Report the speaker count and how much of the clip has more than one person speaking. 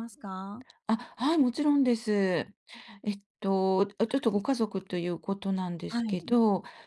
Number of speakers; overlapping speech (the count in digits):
2, about 9%